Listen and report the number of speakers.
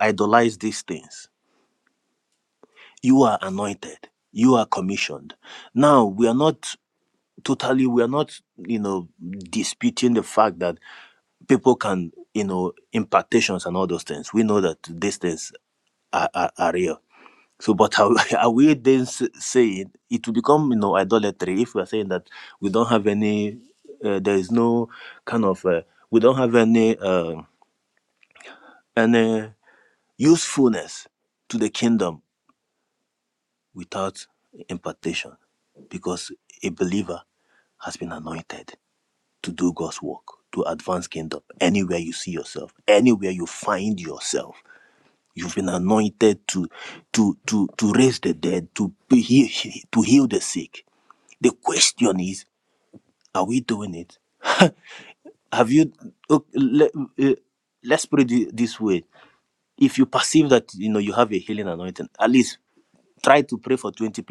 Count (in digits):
1